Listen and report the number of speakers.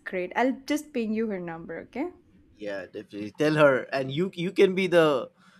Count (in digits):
2